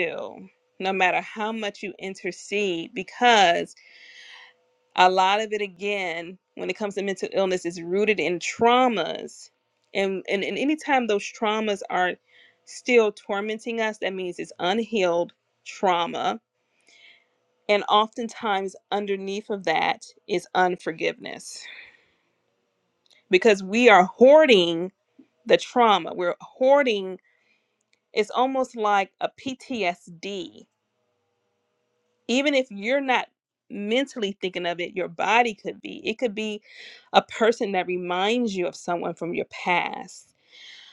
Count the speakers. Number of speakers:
1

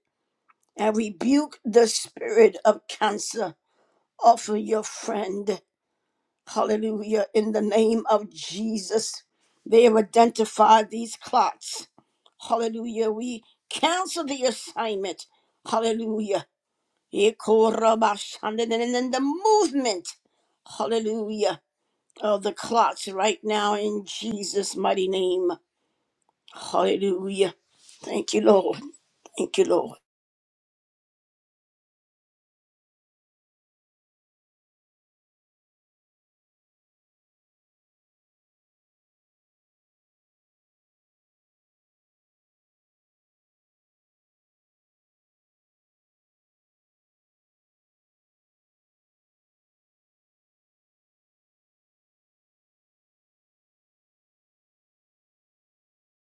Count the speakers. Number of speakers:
1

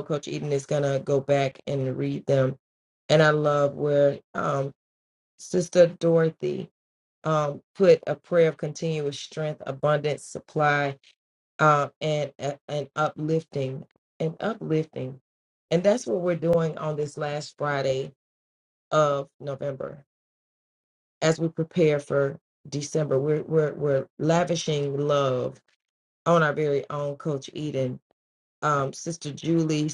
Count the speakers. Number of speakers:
1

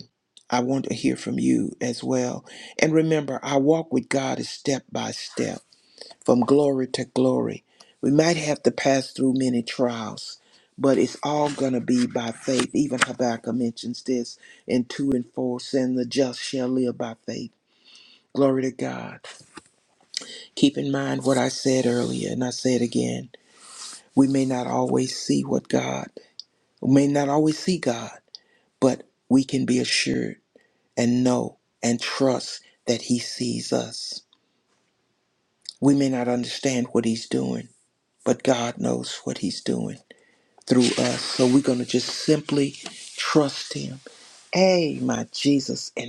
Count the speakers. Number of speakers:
1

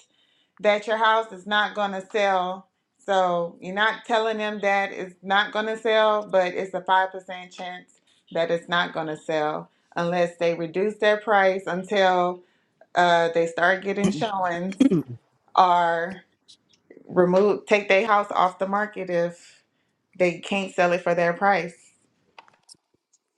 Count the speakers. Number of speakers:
1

